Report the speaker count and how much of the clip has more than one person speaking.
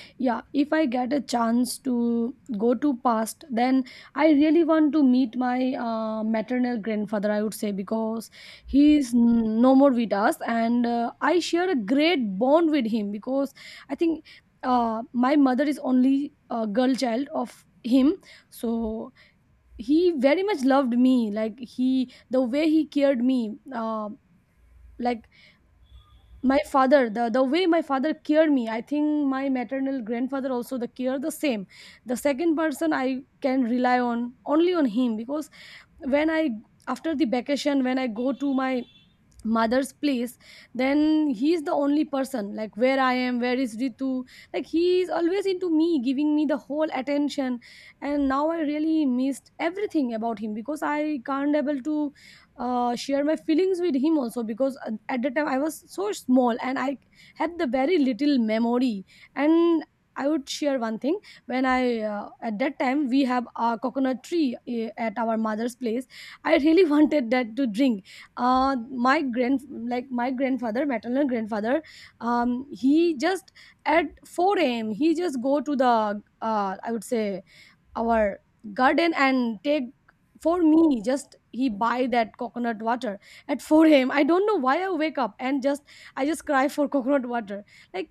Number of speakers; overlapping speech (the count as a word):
one, no overlap